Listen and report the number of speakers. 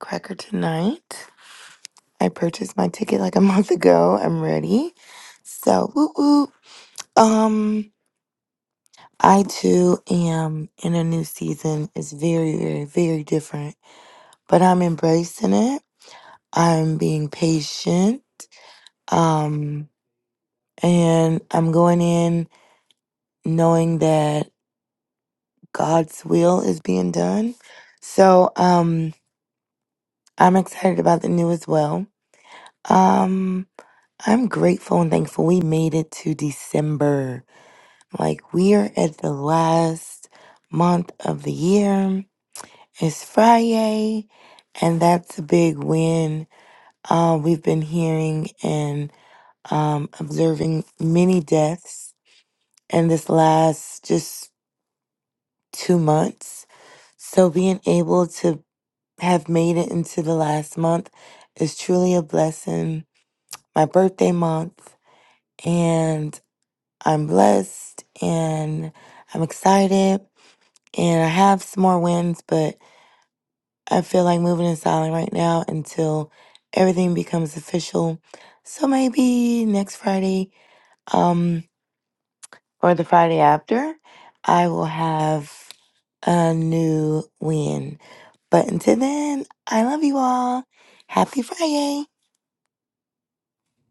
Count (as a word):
one